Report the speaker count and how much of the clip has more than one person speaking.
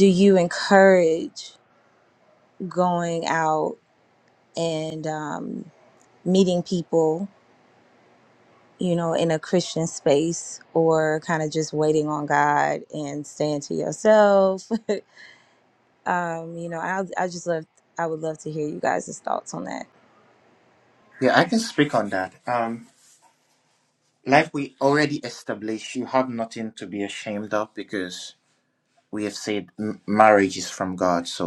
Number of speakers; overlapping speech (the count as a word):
two, no overlap